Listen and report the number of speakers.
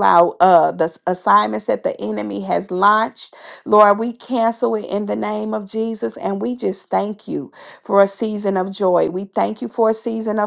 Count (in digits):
1